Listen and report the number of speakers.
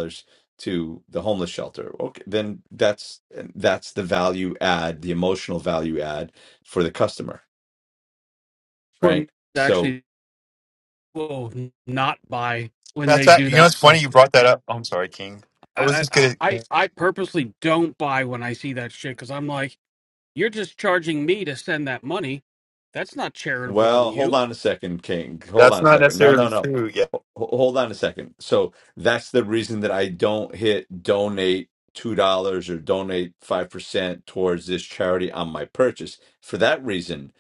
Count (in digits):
3